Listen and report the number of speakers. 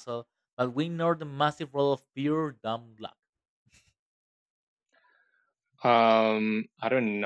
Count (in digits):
2